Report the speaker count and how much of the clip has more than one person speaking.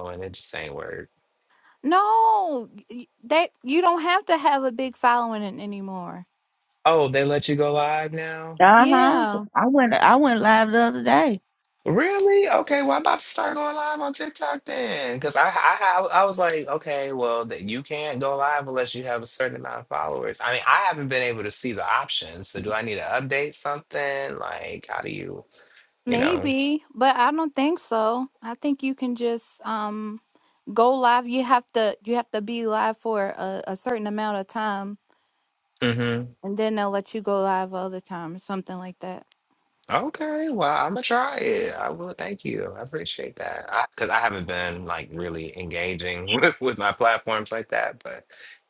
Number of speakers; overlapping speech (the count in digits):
3, about 2%